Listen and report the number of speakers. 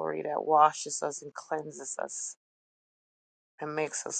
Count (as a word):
one